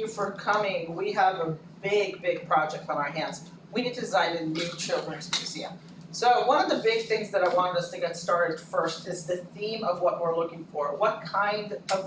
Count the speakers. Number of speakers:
1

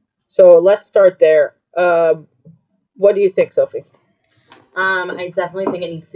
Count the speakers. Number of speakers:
2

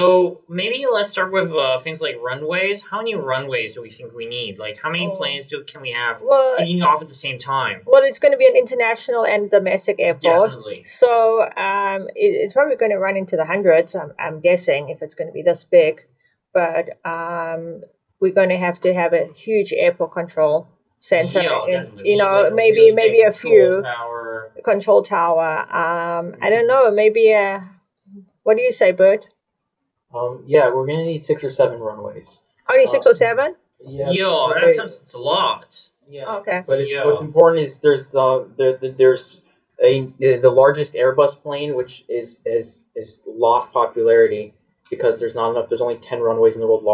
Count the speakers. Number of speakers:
3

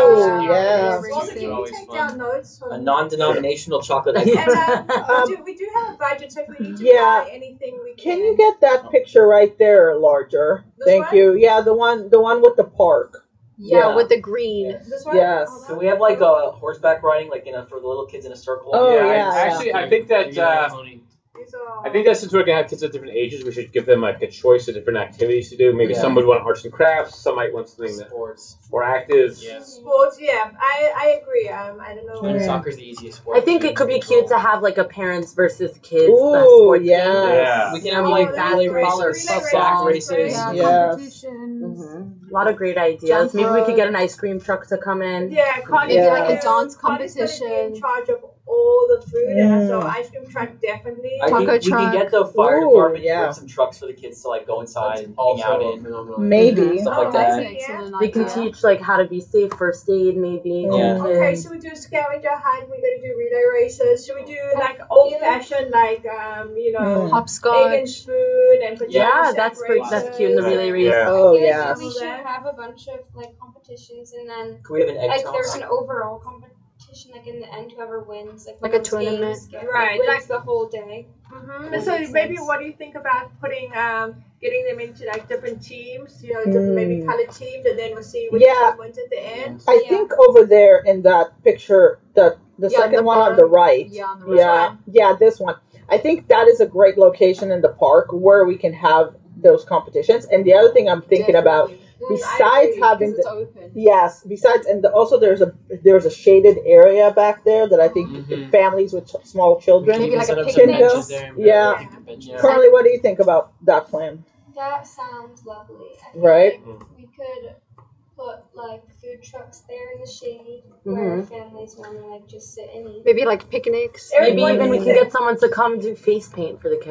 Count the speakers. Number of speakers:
8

